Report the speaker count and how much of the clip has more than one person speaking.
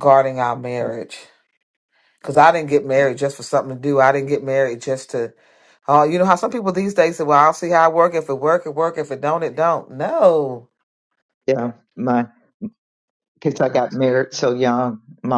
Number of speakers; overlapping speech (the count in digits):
2, about 1%